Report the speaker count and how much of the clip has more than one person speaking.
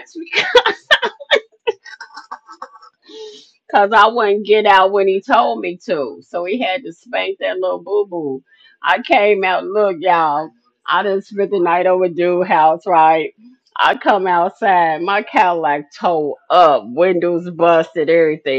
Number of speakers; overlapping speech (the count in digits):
1, no overlap